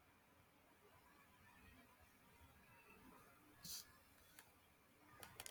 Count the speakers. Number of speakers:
zero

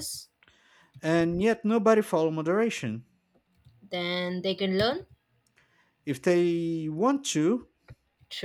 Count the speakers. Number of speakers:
two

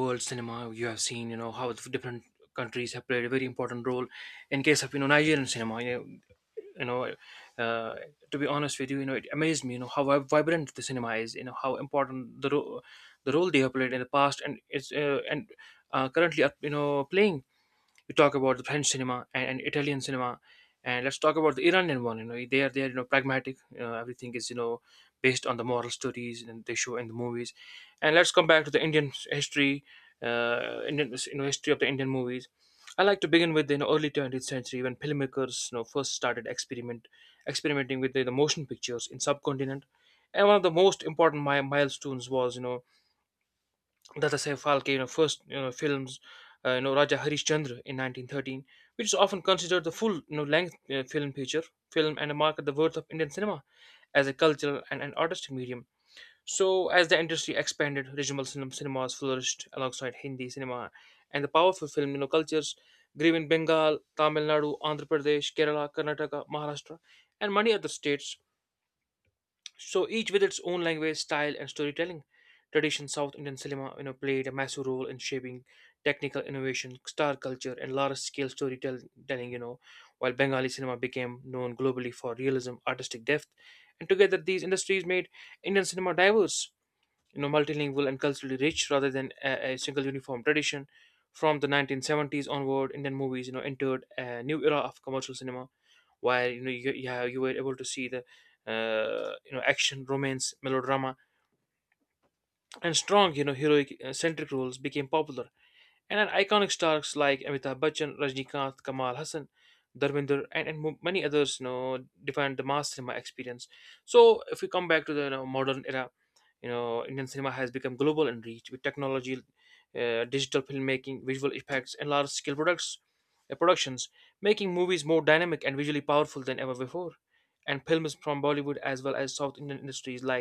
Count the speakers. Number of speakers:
one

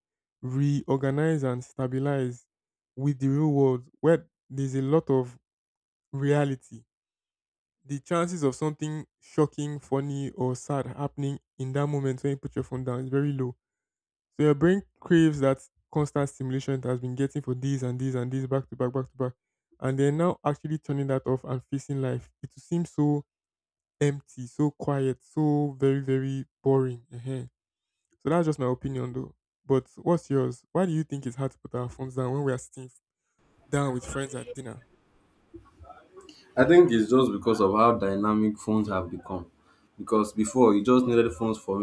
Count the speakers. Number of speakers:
two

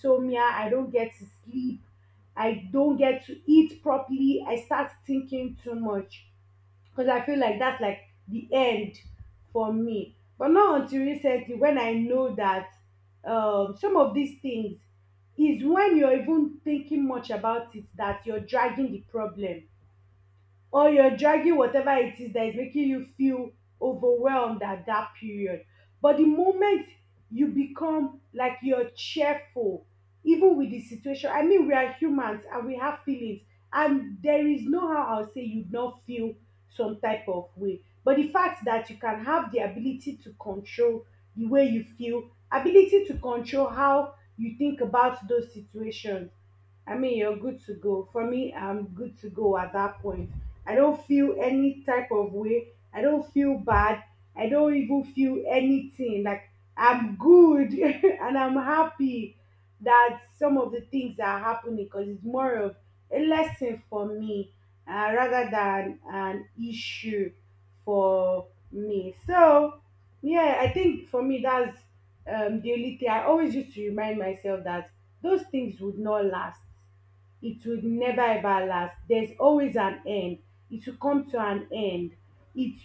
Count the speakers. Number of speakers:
one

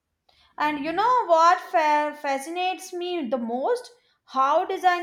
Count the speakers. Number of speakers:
one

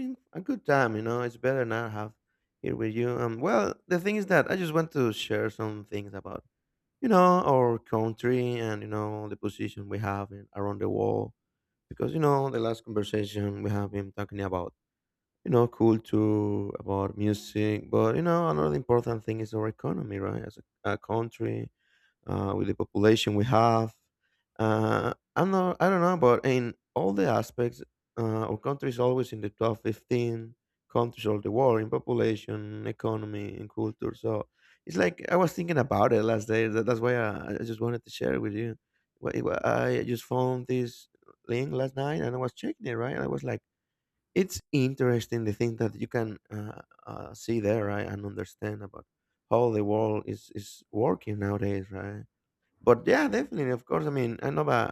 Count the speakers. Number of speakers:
one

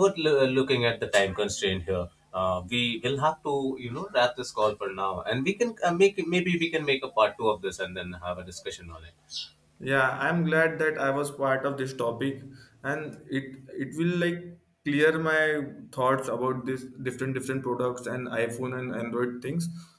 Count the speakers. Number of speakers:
two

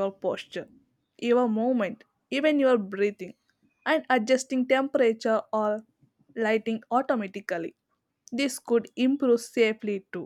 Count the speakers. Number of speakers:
one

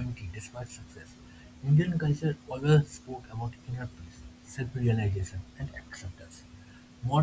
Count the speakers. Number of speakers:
one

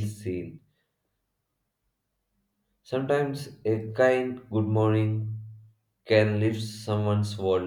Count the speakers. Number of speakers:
one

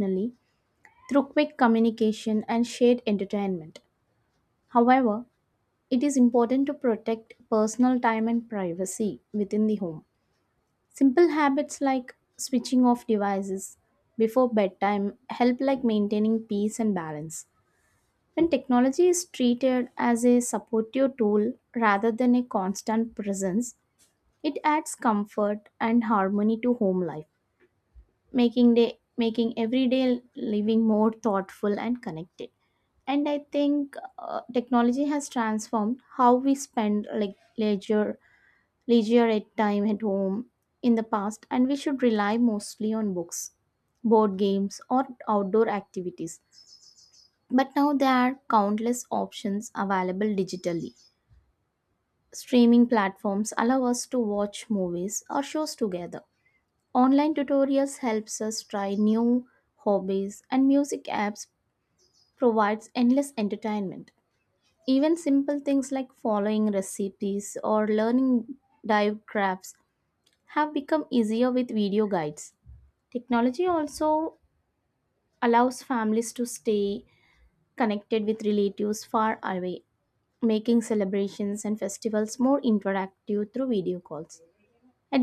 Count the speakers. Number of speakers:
one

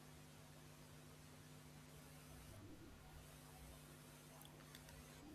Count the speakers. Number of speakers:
zero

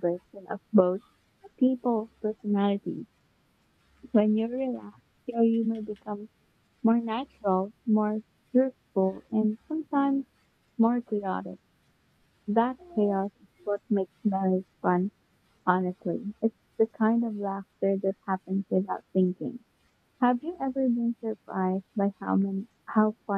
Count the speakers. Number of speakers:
one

